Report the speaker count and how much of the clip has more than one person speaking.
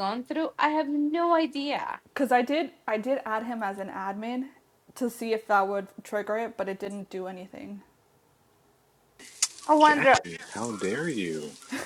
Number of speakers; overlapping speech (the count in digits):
3, about 4%